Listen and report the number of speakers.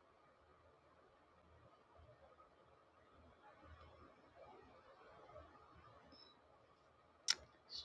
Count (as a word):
zero